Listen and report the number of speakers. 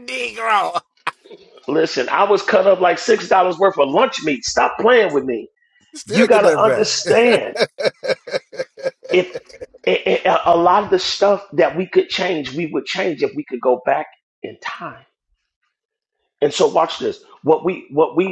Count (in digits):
2